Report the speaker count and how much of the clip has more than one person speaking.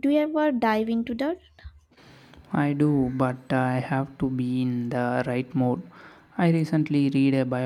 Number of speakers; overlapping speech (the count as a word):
two, no overlap